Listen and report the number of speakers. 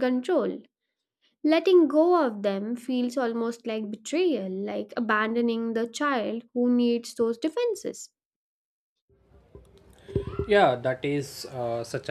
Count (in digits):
2